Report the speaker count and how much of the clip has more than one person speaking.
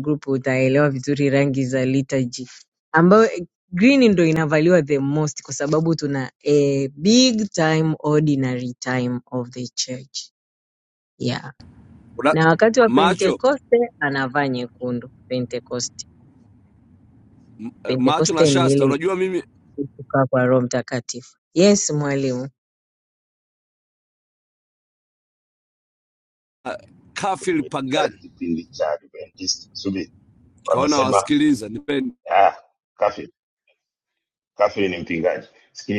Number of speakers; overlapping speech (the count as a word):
three, about 6%